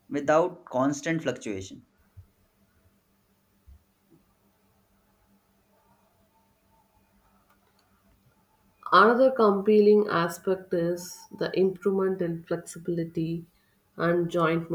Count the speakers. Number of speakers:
two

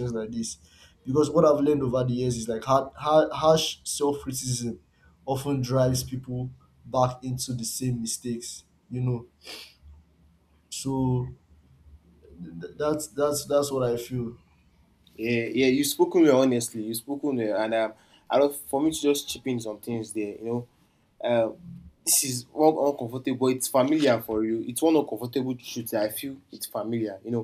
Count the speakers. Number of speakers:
two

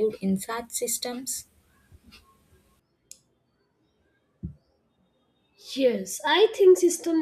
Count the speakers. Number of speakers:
two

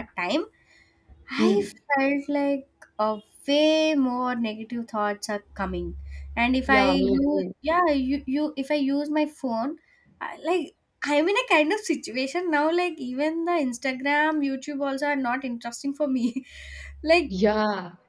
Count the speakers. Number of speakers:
two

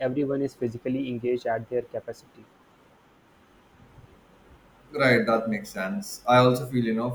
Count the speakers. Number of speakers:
two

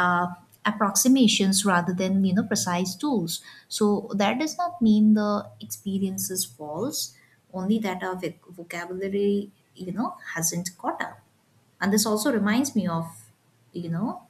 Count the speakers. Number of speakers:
one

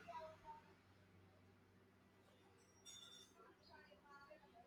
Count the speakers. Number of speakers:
zero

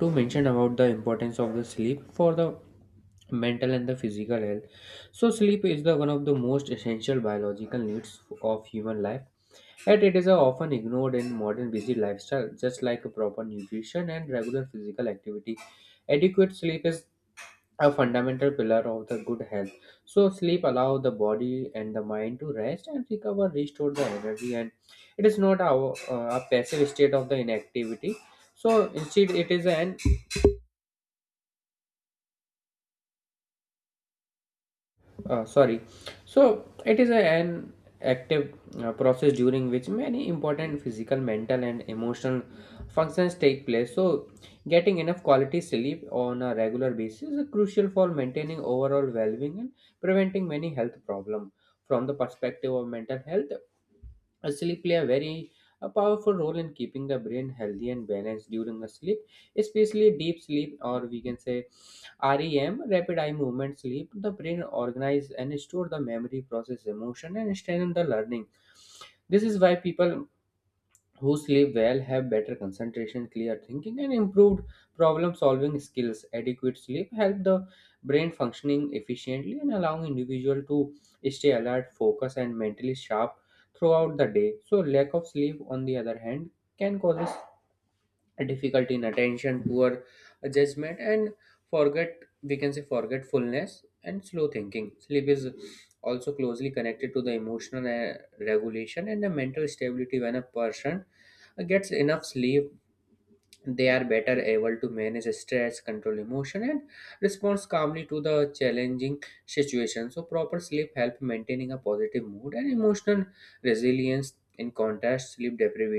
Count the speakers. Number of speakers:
one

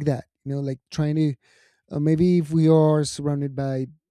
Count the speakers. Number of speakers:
one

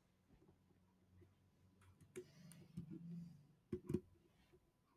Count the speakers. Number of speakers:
zero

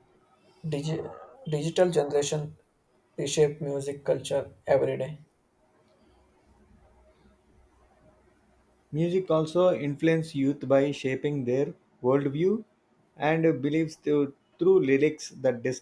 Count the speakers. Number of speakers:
two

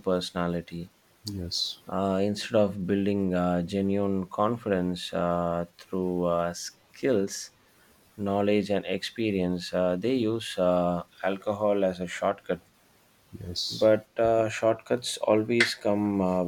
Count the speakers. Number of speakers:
two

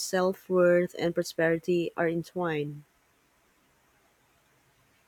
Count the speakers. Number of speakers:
one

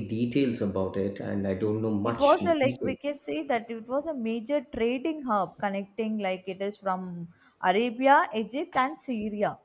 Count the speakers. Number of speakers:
two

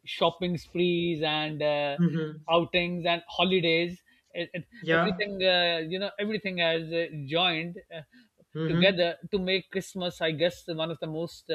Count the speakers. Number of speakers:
two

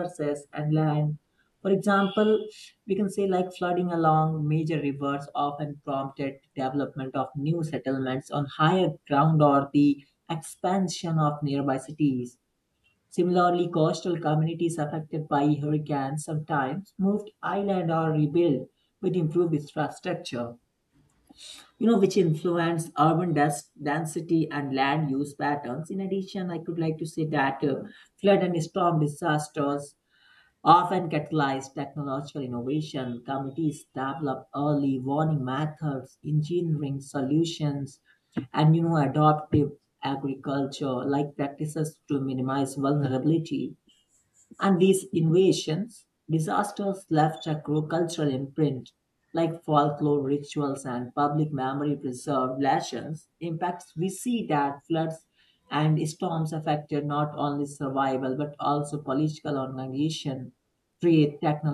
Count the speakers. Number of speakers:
one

